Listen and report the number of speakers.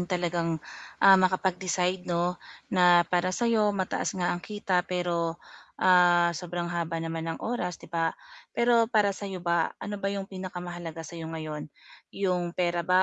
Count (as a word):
one